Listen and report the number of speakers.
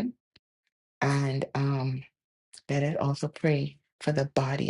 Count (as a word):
one